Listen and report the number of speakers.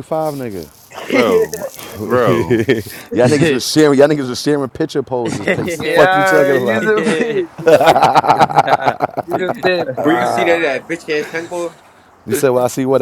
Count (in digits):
4